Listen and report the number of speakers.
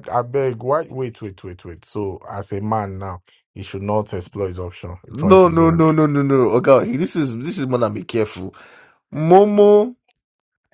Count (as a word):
two